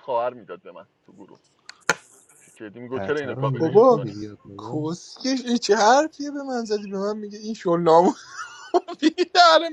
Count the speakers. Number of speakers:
3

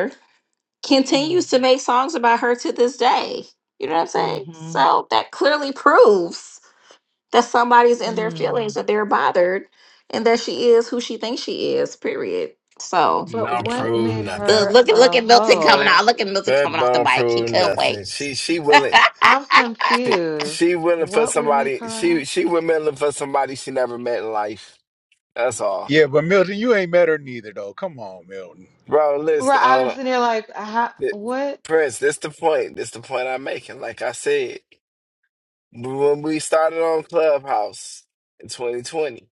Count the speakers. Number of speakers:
4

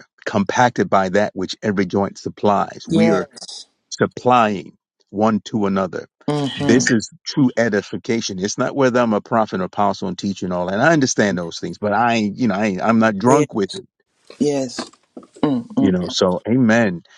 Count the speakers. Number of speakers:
2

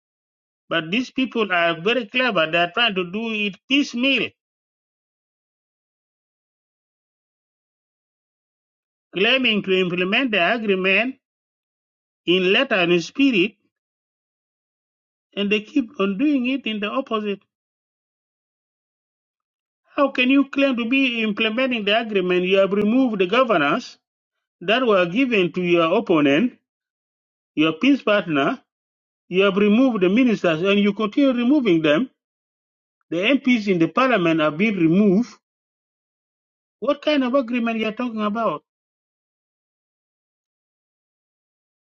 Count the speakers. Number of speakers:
1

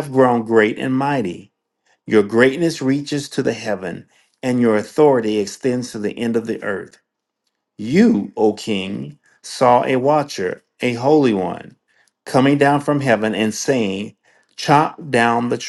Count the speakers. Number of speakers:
1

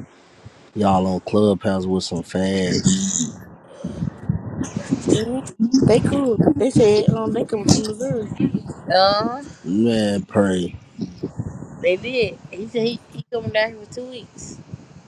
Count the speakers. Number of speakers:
3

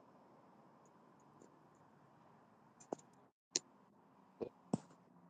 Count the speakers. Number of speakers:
0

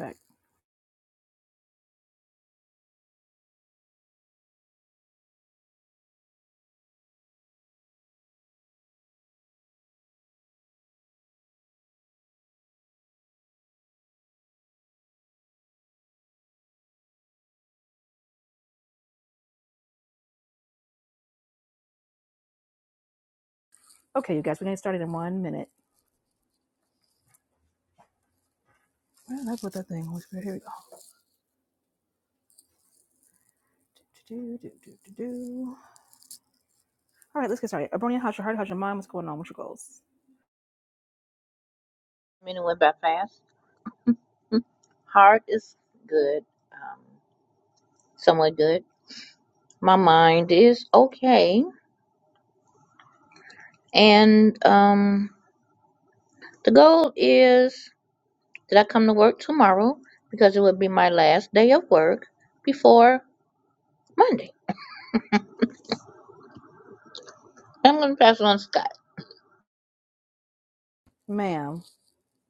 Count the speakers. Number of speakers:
2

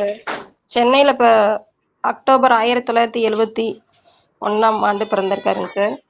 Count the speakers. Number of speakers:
1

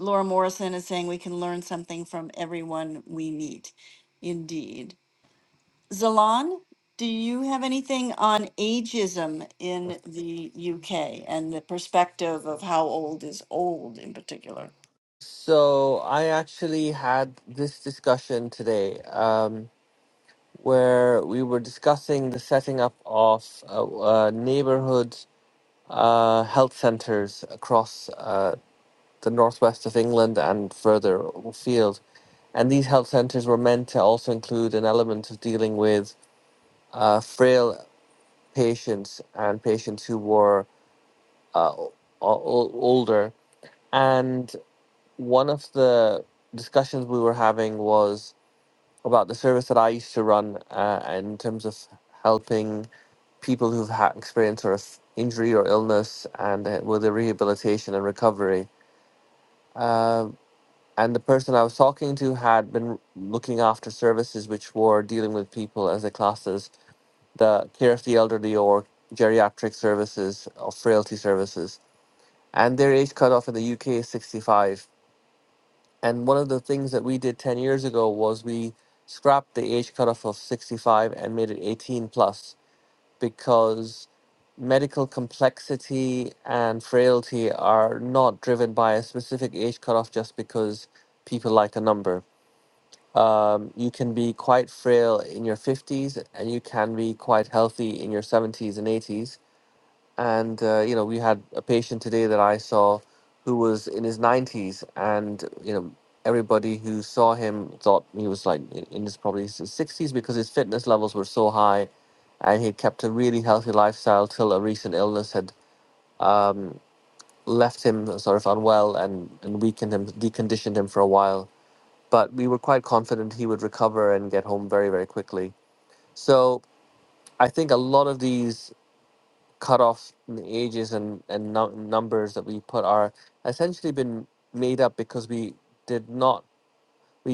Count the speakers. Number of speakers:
2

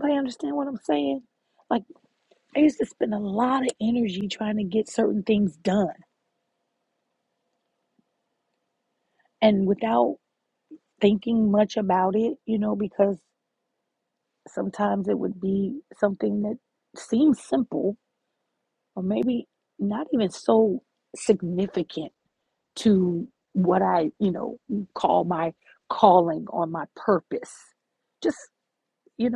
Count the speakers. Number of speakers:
1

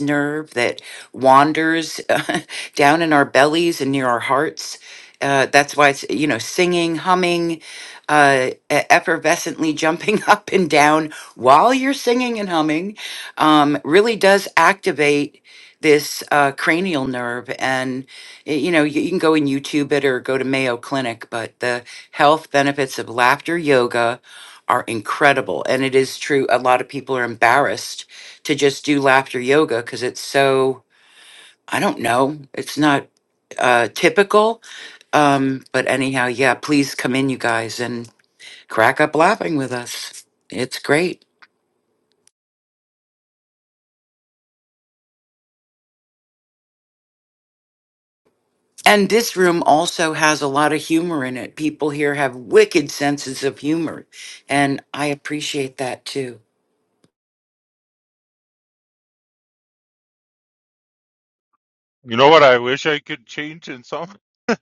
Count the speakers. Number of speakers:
2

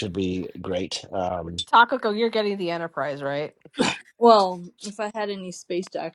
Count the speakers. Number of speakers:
3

